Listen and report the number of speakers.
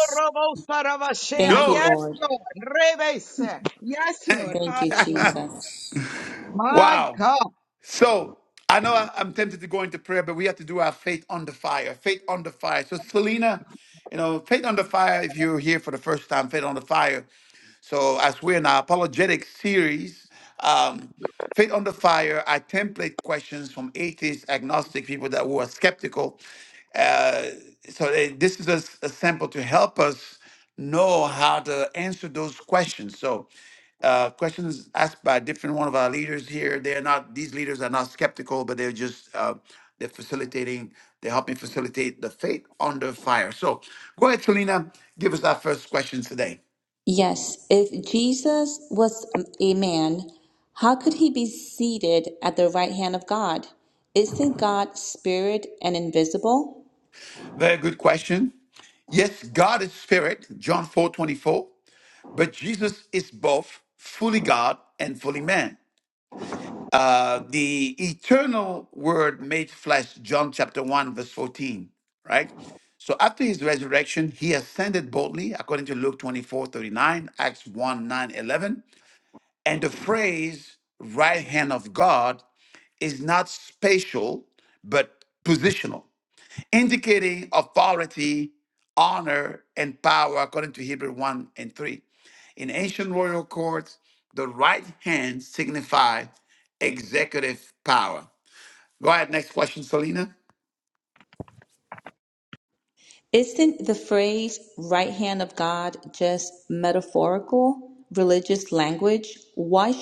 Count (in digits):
3